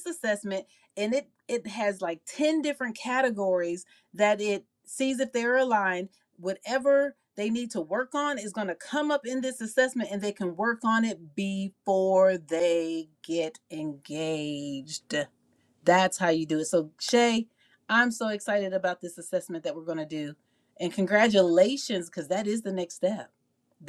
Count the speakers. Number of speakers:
one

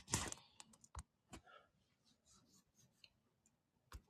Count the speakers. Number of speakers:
zero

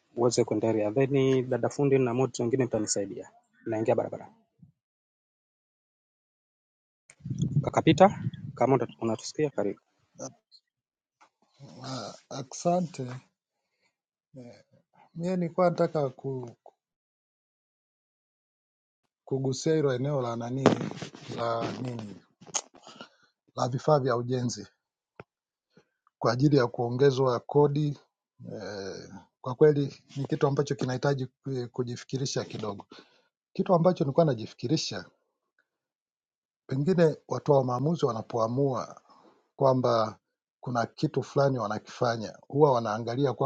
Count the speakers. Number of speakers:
two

